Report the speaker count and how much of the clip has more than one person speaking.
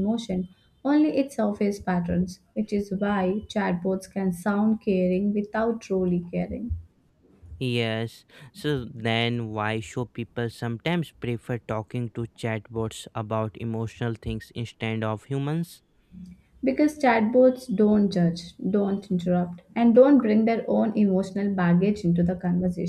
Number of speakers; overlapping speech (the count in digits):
2, no overlap